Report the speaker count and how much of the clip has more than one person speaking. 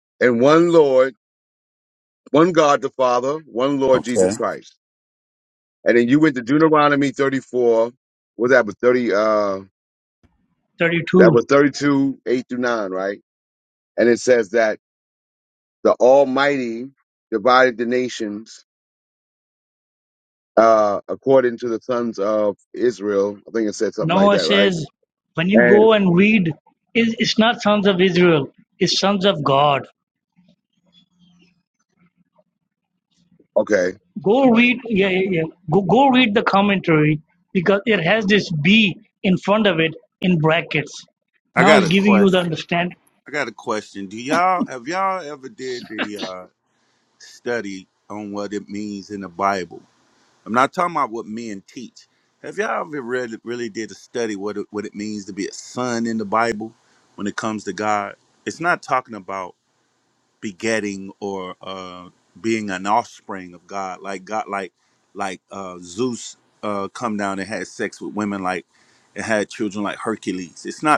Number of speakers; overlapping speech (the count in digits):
3, about 3%